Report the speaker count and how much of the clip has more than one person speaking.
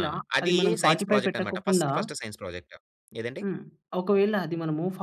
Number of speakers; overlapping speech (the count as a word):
two, about 33%